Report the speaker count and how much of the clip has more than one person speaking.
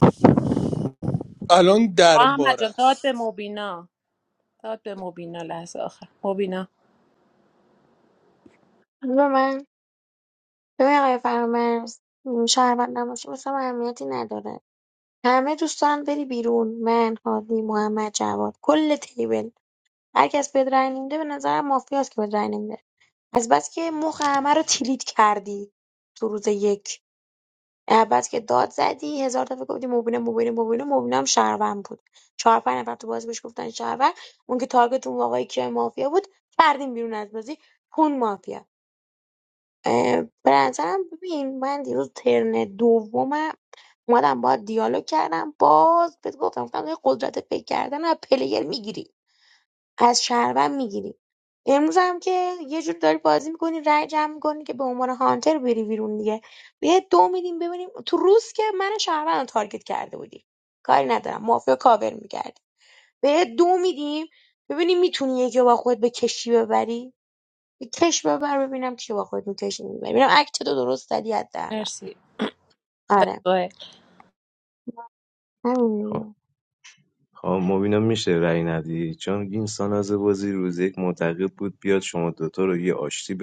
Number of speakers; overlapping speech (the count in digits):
4, about 1%